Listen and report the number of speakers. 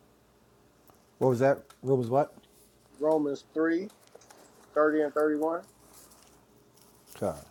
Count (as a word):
two